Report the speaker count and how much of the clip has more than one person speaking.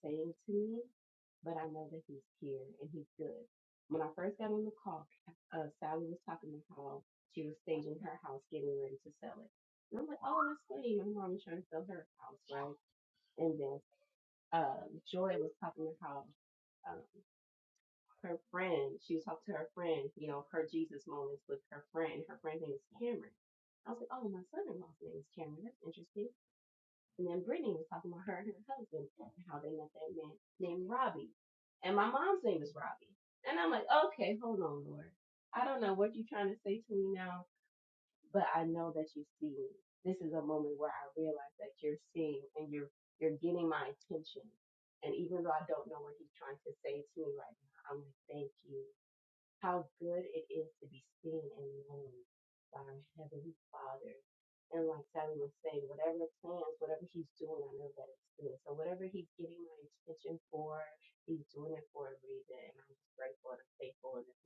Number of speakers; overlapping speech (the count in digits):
1, no overlap